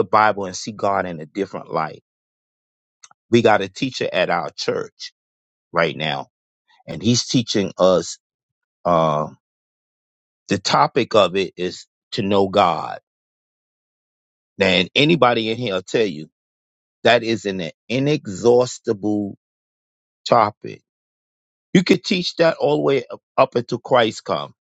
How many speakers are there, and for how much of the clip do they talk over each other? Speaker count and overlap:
1, no overlap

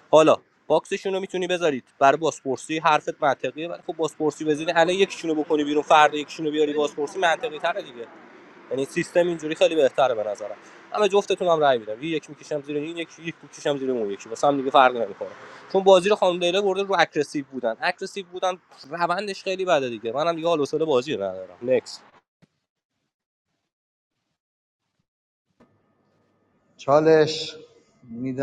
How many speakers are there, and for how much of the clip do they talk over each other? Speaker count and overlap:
2, no overlap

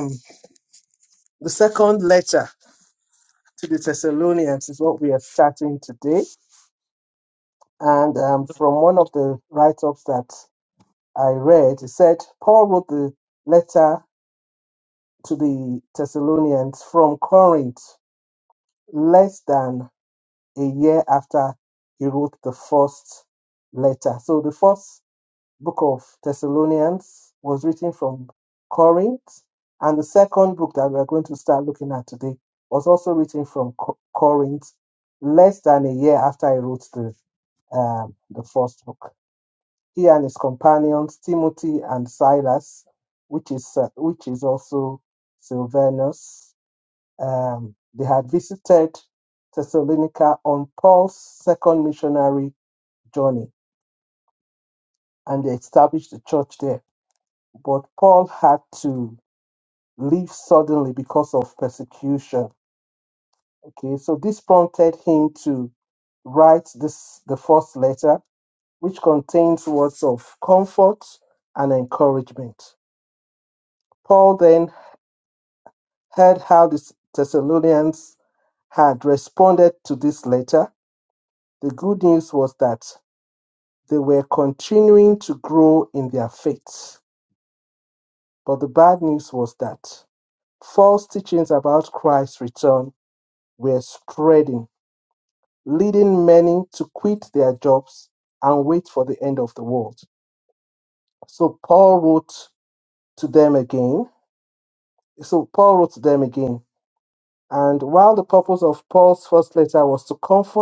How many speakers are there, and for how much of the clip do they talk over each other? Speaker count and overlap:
1, no overlap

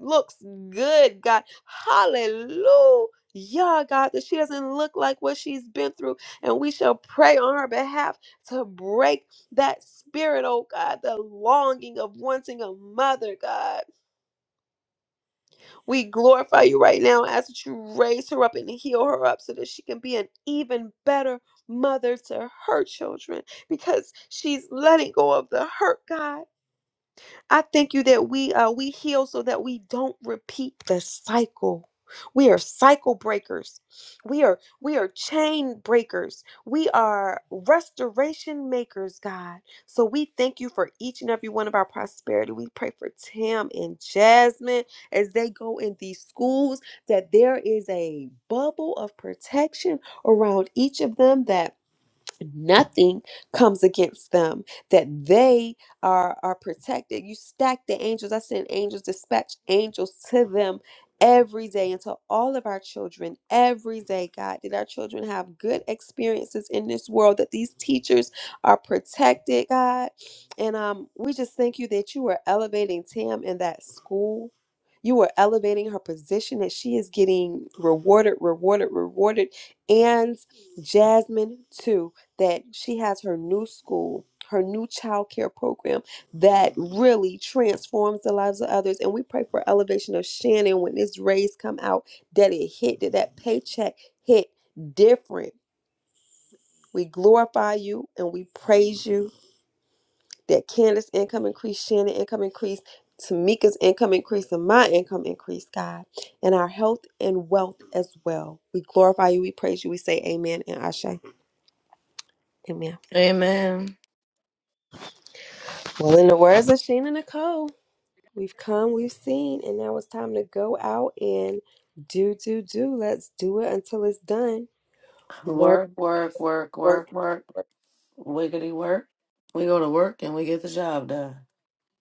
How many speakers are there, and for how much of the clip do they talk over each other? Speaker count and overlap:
2, under 1%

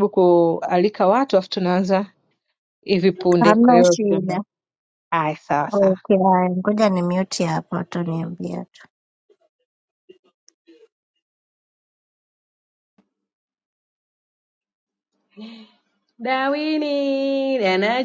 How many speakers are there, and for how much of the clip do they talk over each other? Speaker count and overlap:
3, about 7%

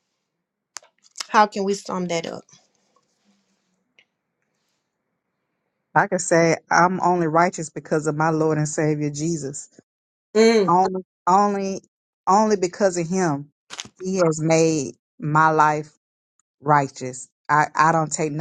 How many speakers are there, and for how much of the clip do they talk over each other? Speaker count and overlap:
2, under 1%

